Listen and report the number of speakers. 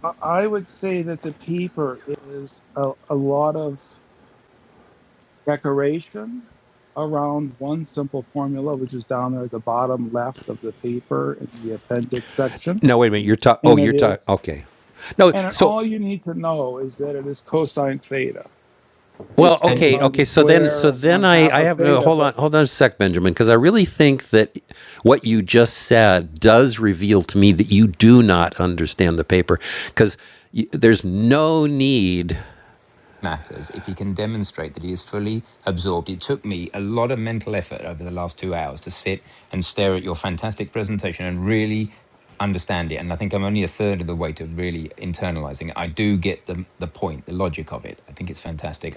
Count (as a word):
three